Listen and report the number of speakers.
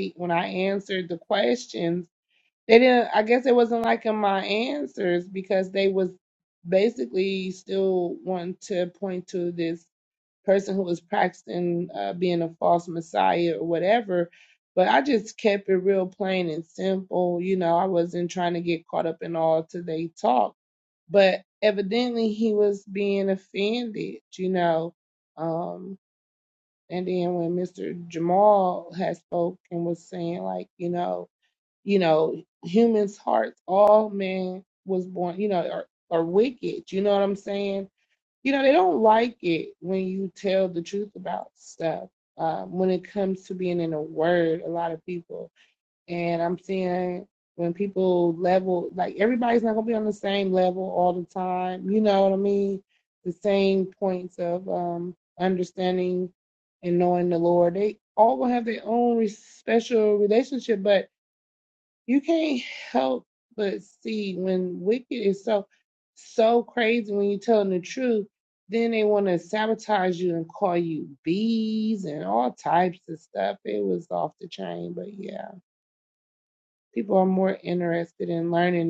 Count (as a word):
one